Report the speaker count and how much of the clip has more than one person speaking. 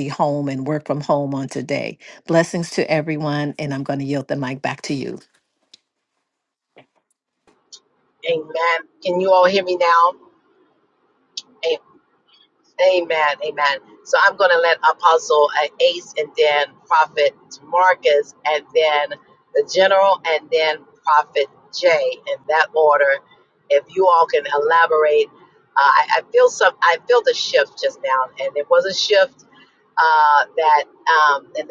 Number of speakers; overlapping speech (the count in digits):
2, no overlap